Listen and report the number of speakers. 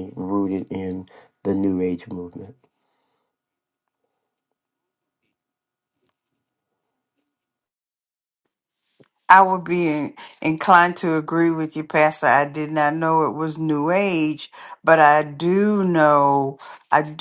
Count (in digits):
2